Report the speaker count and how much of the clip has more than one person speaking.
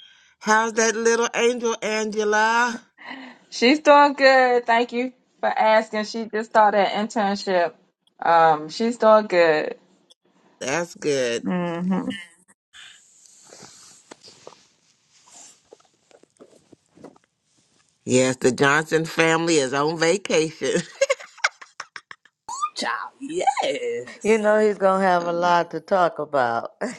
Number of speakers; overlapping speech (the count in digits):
4, about 1%